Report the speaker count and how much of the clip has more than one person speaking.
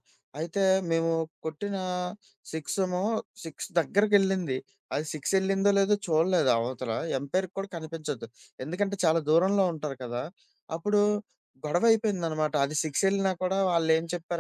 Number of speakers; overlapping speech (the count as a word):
one, no overlap